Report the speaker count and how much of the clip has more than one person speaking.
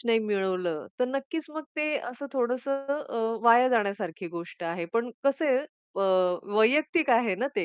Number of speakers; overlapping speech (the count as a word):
one, no overlap